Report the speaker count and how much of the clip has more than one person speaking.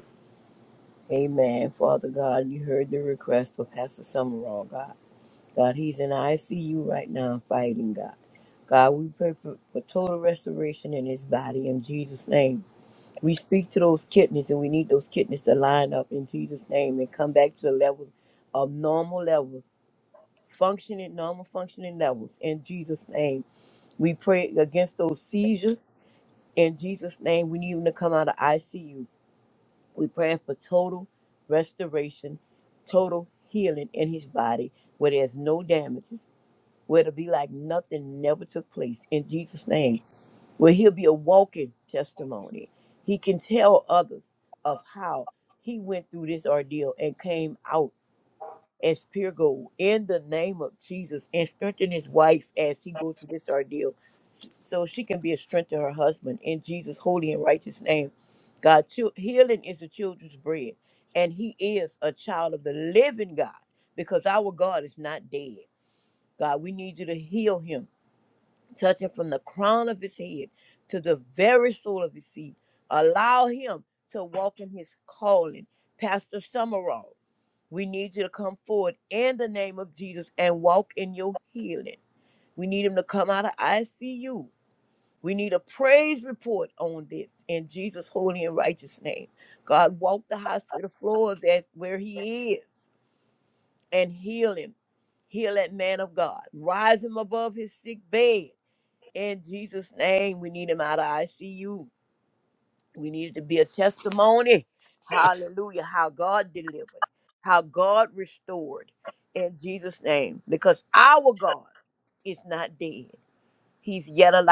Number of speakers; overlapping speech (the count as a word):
one, no overlap